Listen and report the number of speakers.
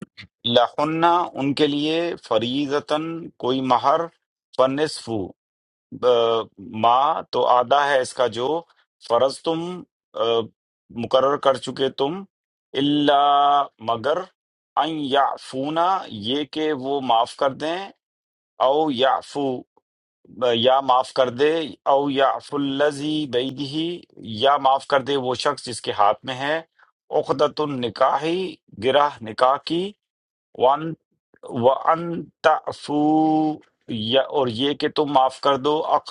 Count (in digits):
1